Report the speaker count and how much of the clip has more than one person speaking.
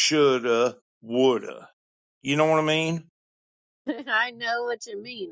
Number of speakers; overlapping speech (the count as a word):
two, no overlap